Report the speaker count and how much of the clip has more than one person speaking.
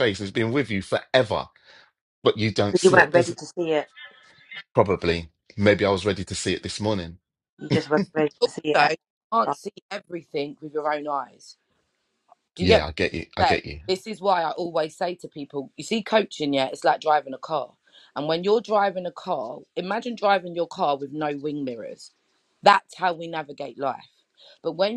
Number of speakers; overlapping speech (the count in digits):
3, about 6%